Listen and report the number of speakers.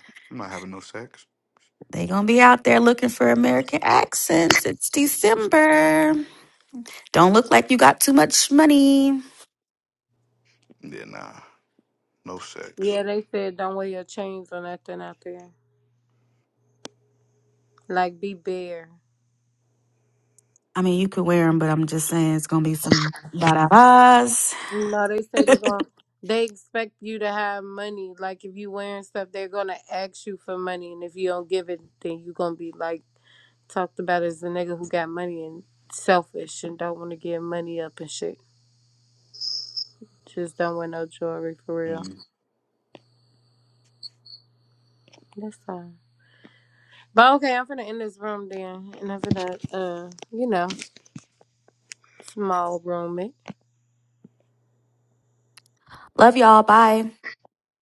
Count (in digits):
3